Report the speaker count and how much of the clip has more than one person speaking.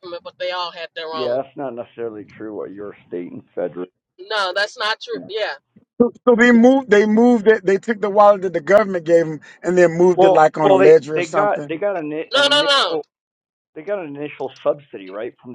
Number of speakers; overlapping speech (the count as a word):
three, about 17%